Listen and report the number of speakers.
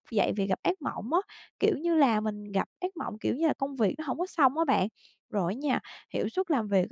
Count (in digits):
1